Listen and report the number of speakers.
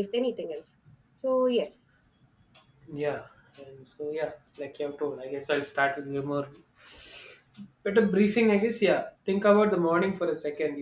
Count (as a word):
two